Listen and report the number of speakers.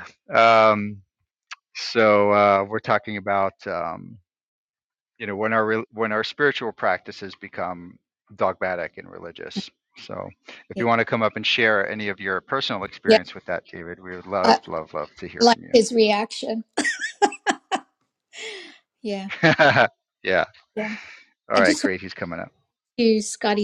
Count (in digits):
2